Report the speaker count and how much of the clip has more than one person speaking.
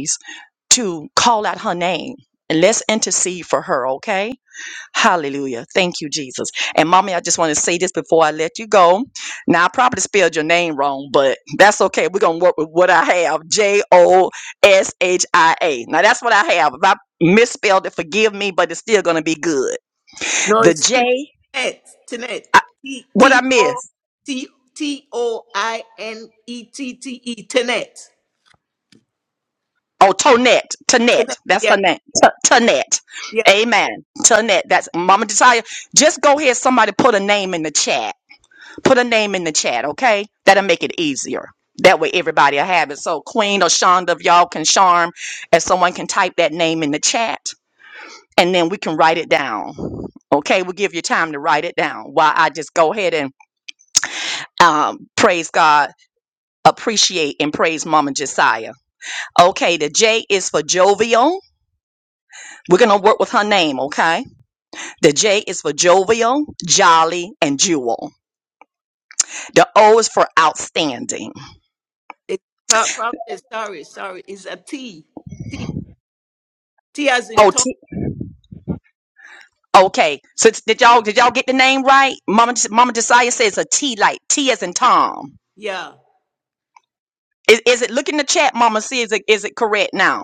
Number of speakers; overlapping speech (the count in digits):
2, about 1%